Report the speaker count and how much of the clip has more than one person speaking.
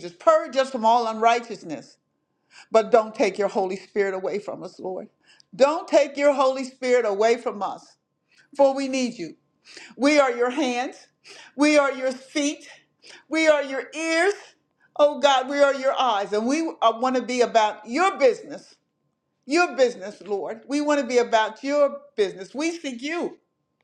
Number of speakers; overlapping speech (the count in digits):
1, no overlap